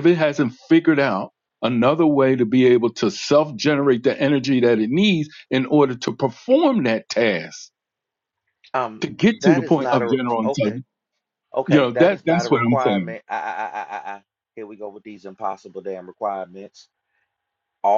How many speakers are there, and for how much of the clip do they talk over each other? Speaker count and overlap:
2, about 18%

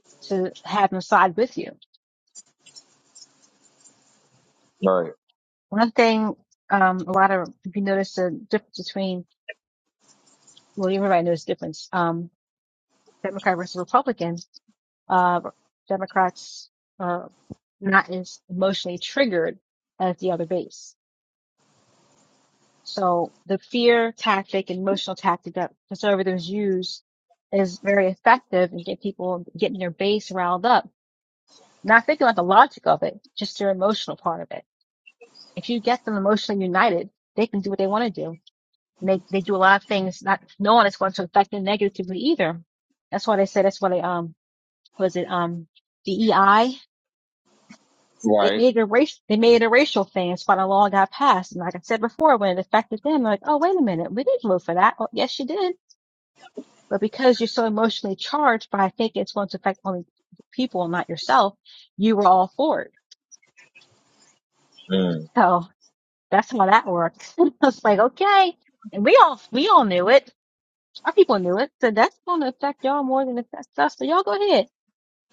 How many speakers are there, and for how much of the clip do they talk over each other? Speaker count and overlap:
2, under 1%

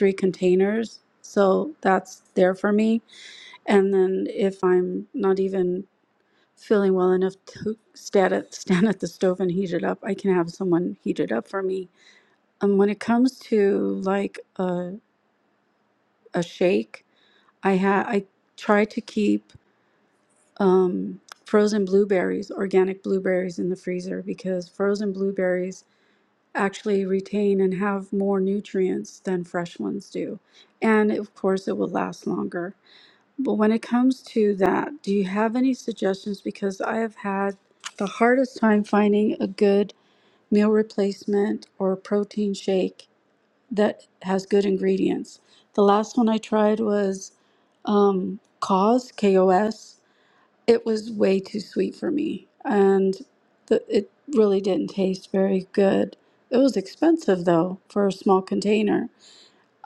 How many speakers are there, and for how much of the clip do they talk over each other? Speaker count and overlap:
1, no overlap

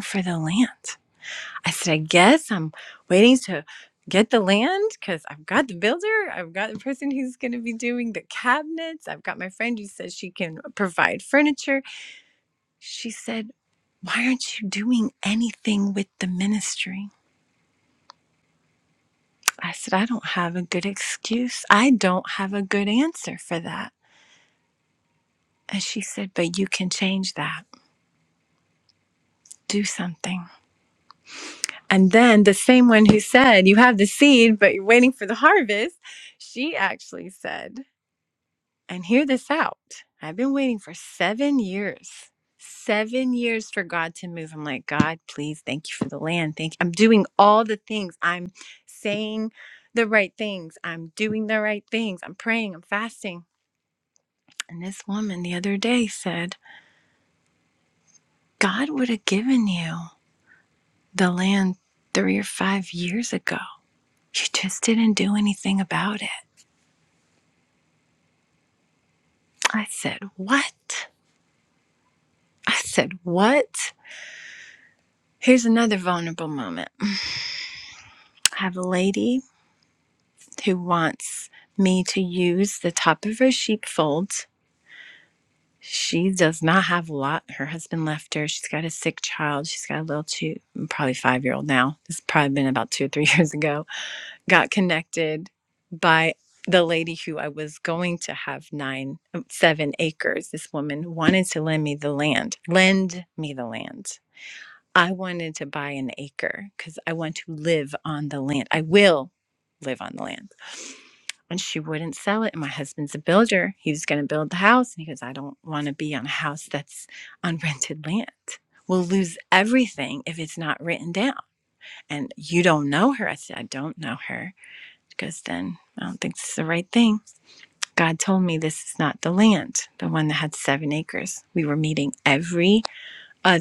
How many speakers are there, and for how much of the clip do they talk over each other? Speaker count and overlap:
1, no overlap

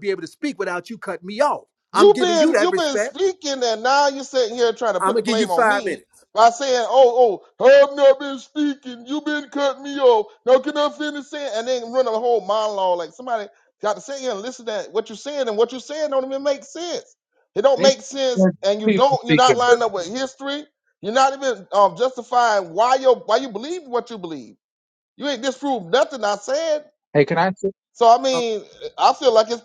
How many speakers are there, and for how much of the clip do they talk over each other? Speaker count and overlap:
3, about 11%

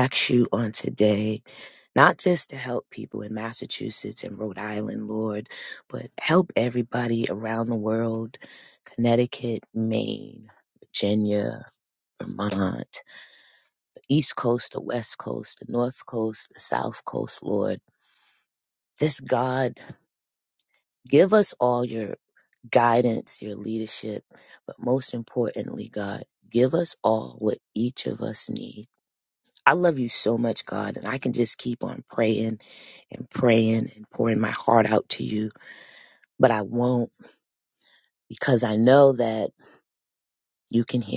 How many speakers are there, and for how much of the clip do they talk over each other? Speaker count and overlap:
1, no overlap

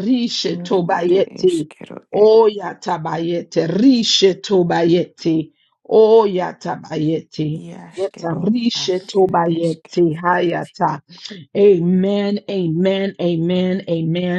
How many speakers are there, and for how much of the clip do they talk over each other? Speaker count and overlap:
2, about 27%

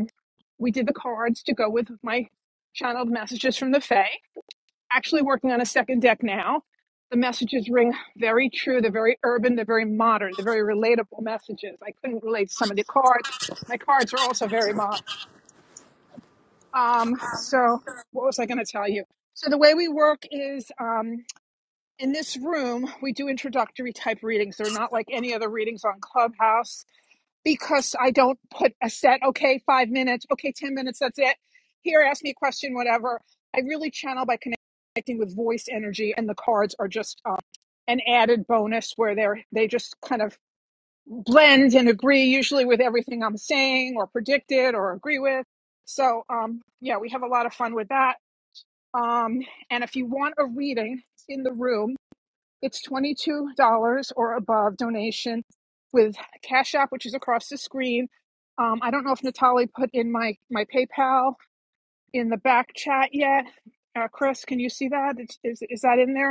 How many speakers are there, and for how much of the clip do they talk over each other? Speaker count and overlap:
1, no overlap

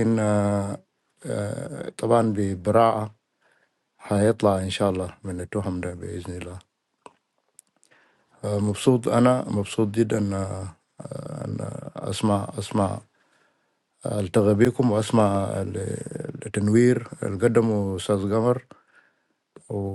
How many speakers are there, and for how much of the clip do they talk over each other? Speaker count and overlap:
1, no overlap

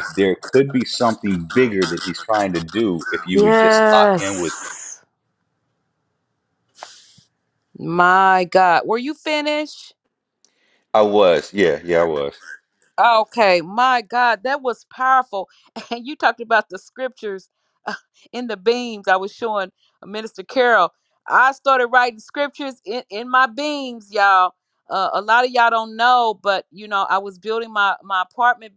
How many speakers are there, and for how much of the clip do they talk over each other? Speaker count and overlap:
2, about 4%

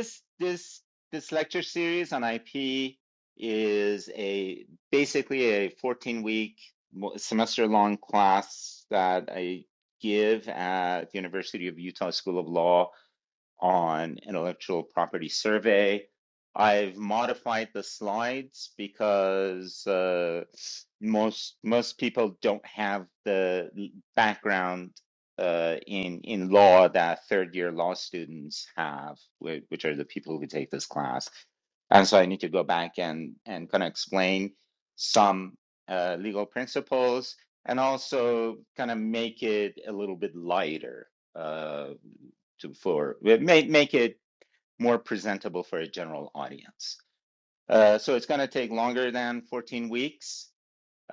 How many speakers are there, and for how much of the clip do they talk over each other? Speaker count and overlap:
1, no overlap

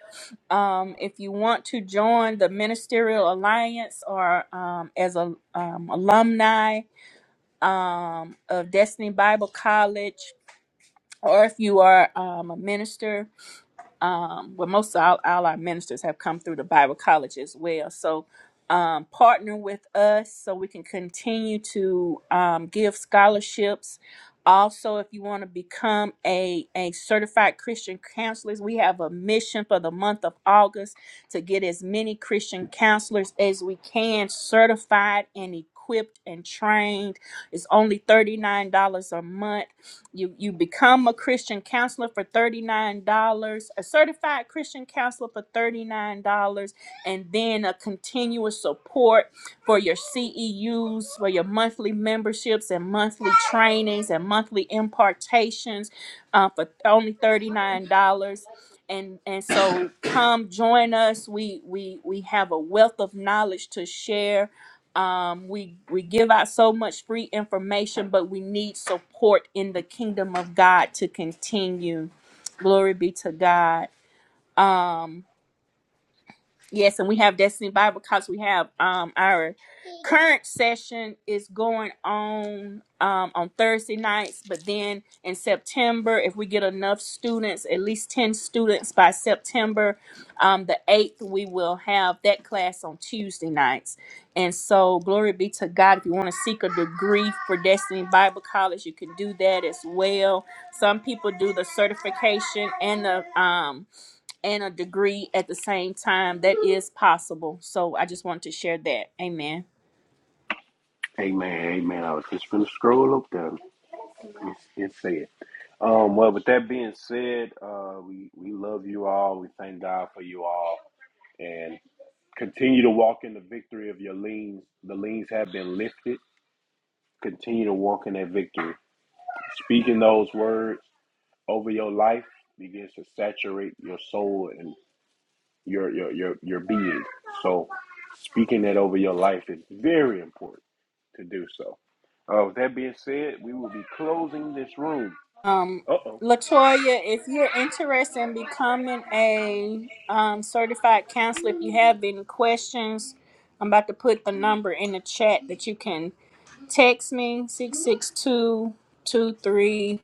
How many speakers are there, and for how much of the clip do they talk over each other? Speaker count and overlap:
2, no overlap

